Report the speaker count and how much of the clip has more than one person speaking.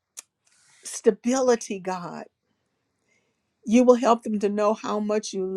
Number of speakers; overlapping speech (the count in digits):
1, no overlap